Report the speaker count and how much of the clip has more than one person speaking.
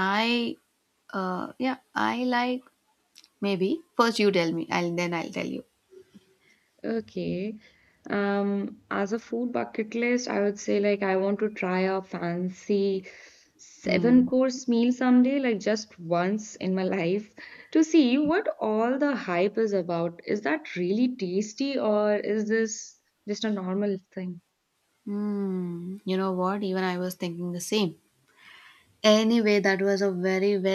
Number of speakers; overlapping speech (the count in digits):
2, about 1%